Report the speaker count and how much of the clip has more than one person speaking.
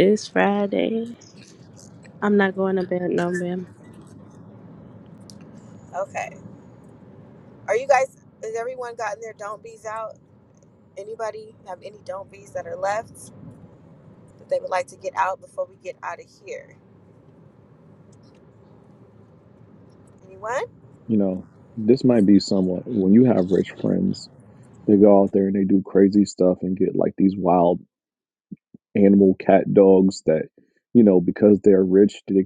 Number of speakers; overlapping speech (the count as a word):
three, no overlap